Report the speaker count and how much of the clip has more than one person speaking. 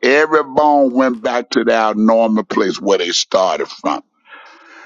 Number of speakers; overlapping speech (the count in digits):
1, no overlap